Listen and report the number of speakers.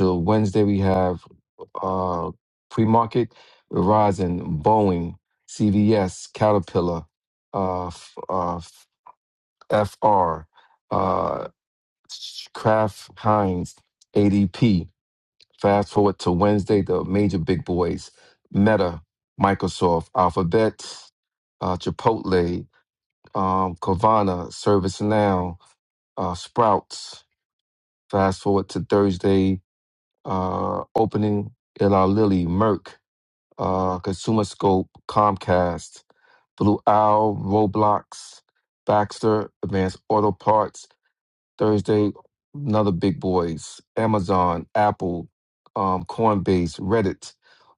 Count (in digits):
1